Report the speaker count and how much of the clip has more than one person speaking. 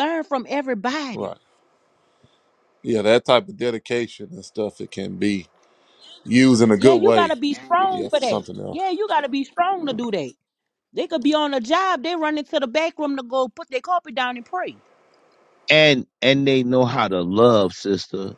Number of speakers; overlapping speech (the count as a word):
three, about 6%